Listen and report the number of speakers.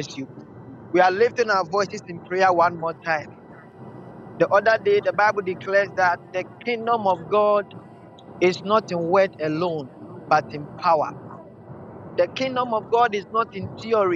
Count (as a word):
one